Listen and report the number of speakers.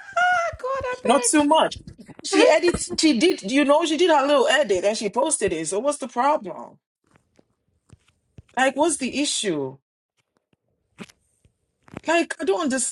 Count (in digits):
2